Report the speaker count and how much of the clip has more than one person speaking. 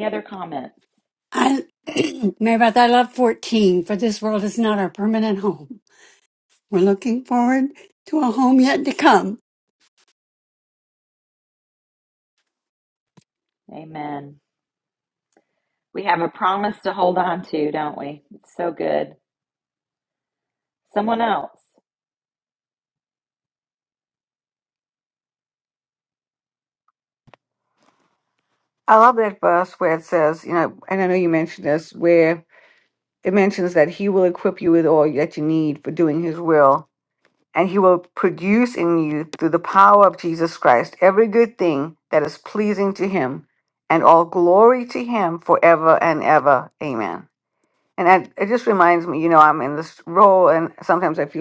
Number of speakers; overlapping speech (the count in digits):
3, no overlap